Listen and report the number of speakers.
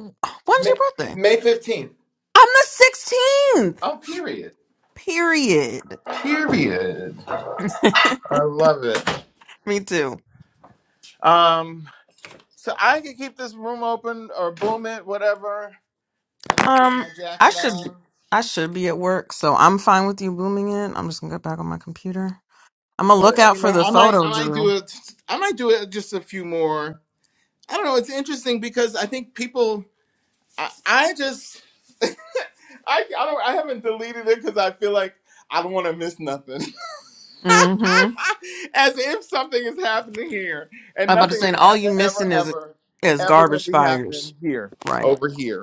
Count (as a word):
two